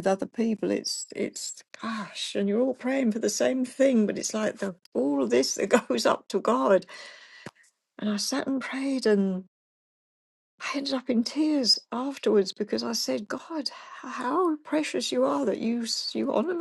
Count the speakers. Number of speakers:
1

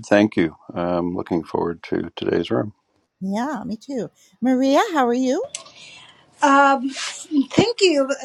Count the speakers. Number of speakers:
3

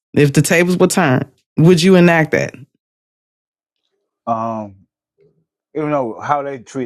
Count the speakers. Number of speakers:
2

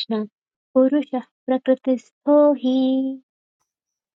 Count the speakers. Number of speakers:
1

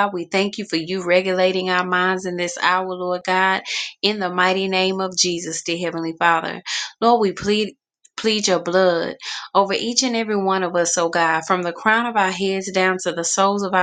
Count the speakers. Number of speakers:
1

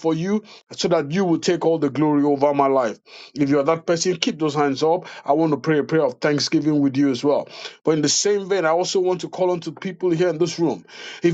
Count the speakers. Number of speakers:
1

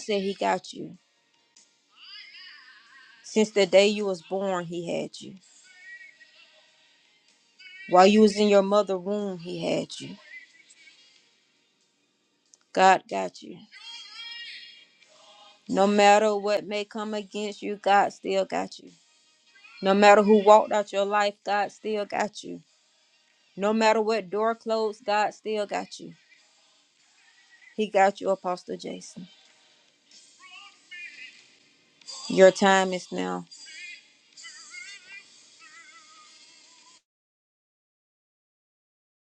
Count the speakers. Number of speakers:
1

